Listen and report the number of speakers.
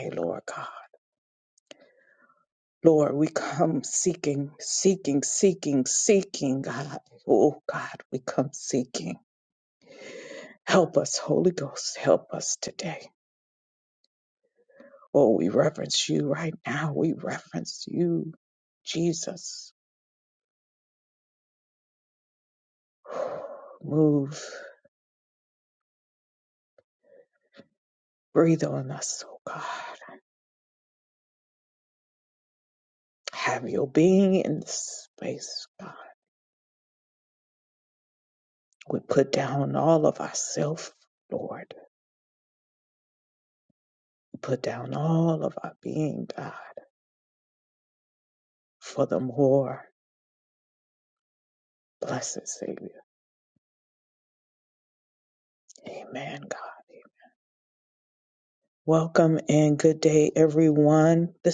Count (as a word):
one